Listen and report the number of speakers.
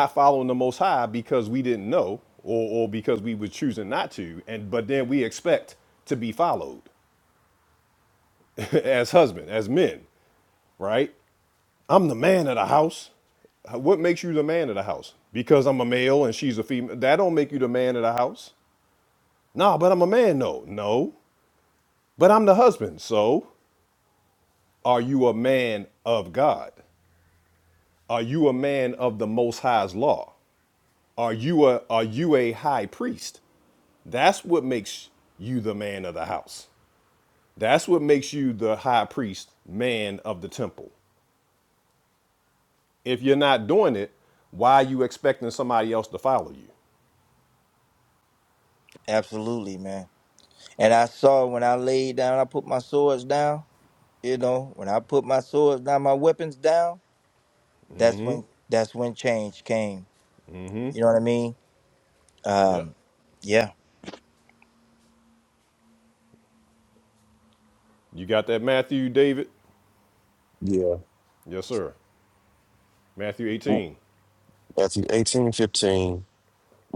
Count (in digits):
3